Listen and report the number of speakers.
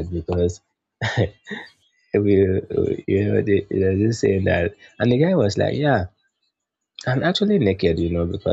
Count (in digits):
1